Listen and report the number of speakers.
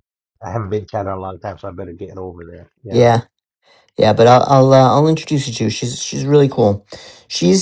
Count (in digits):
2